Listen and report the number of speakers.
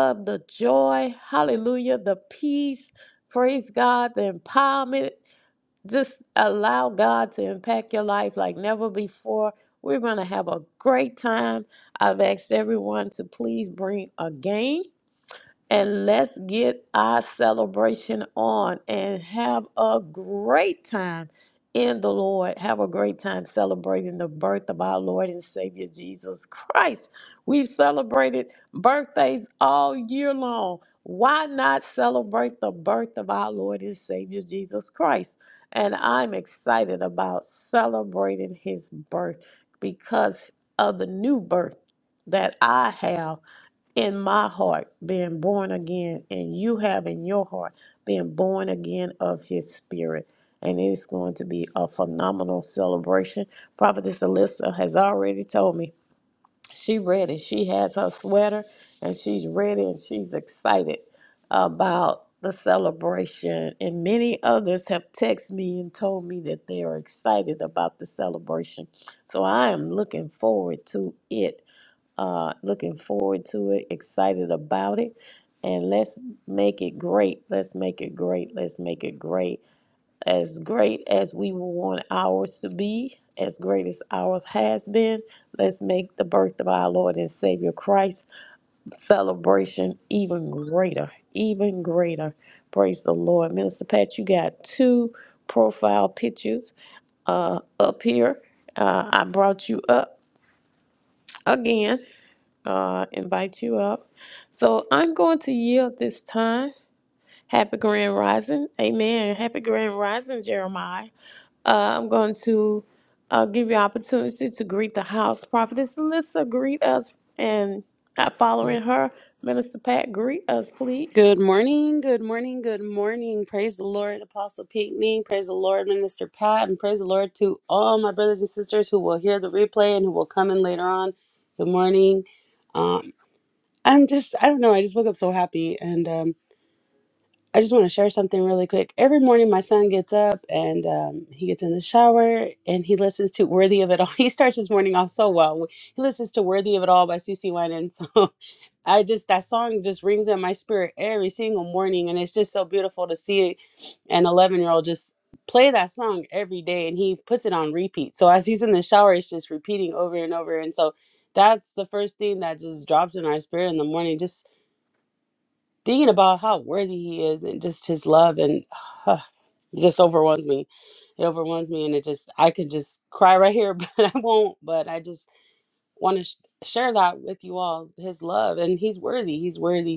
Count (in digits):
2